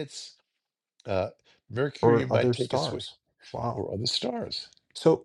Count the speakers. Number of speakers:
2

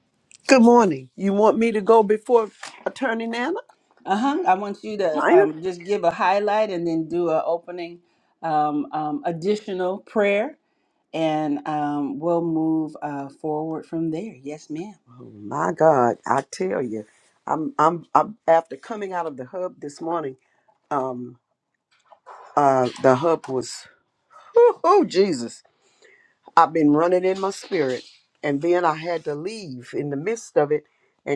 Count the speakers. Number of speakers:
2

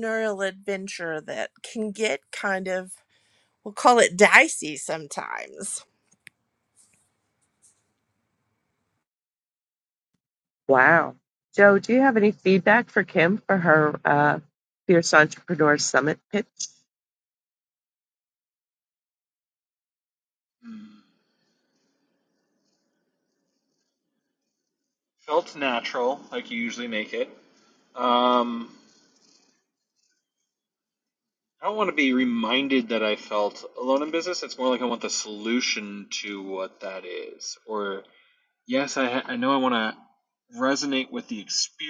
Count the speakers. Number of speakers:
3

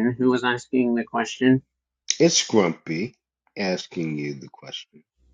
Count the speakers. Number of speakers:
2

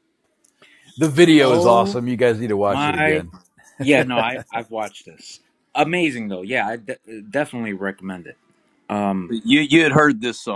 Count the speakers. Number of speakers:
3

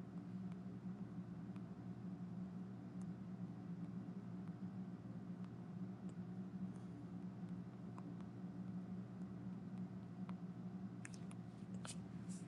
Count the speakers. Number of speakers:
0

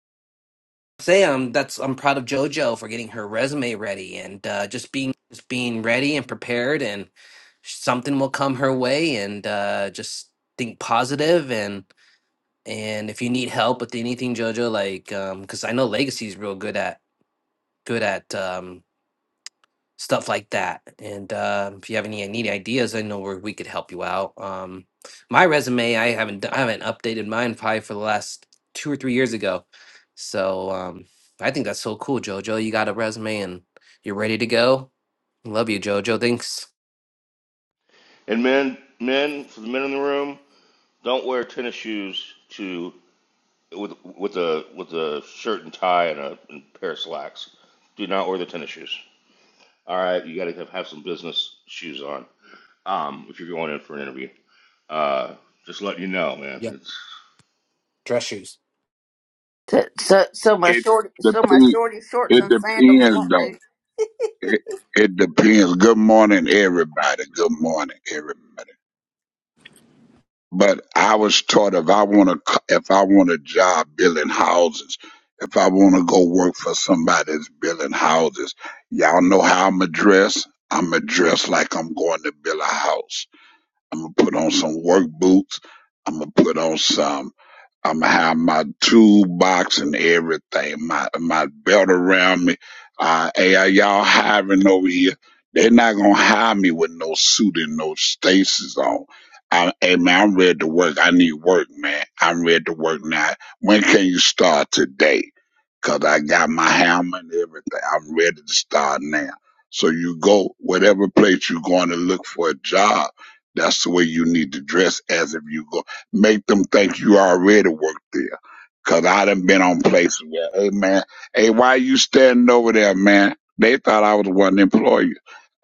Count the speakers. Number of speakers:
4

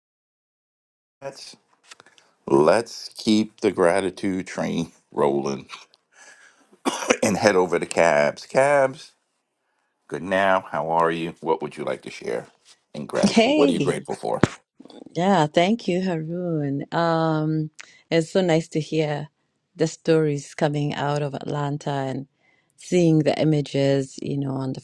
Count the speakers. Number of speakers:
2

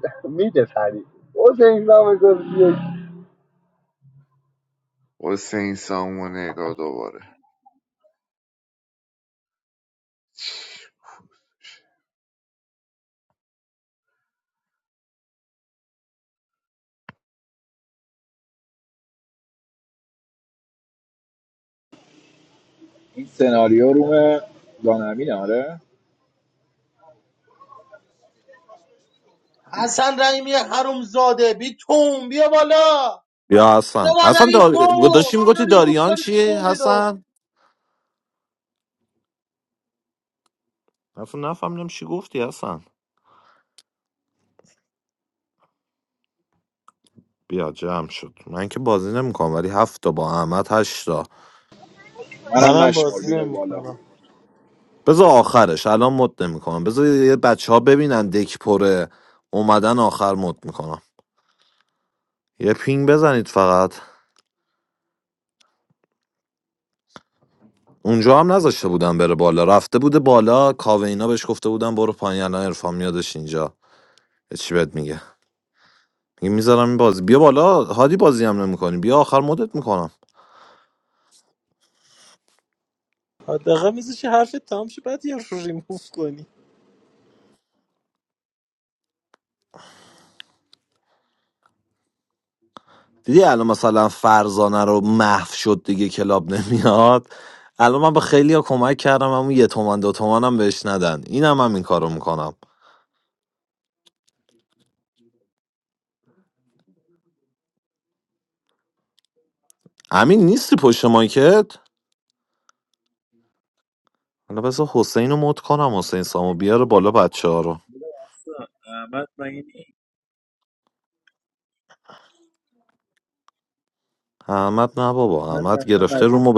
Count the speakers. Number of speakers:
7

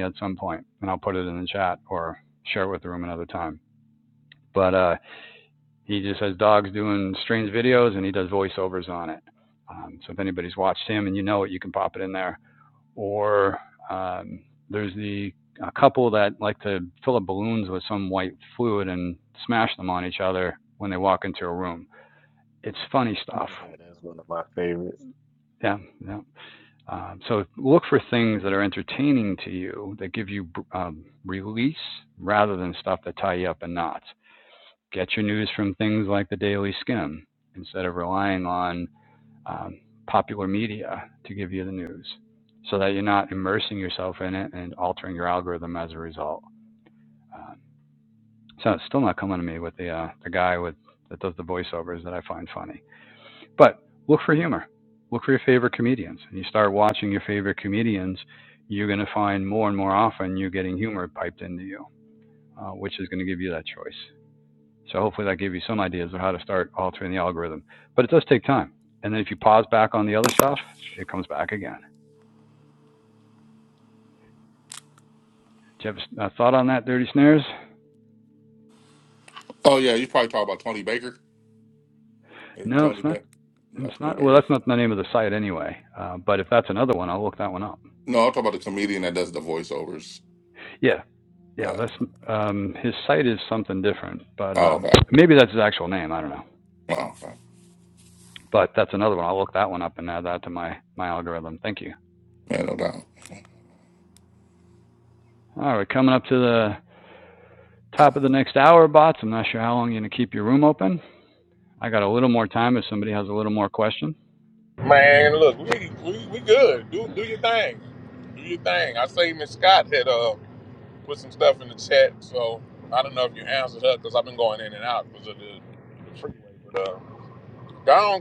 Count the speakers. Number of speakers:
4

